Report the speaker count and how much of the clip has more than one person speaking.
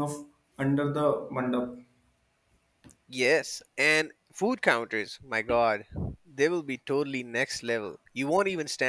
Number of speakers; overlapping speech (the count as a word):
two, no overlap